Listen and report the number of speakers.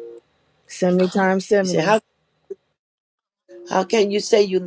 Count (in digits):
2